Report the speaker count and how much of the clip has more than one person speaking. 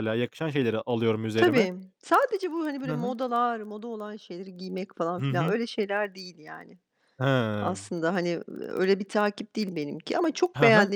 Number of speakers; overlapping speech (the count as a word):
two, about 14%